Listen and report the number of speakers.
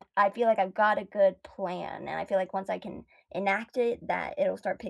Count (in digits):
1